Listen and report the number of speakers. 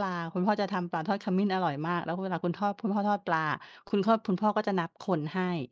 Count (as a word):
one